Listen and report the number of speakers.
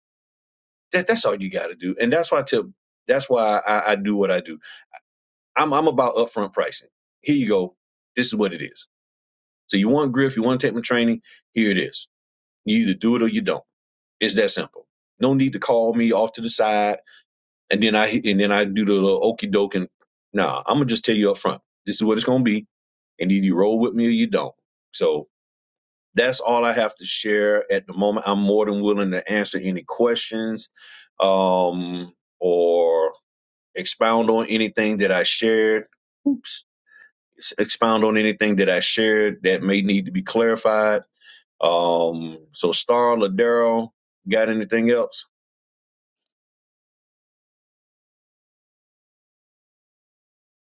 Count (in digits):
1